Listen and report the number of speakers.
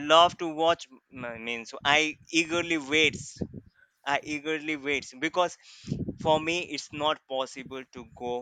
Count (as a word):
one